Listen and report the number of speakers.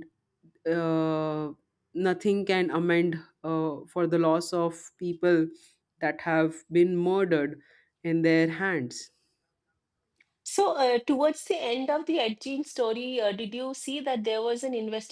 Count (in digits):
2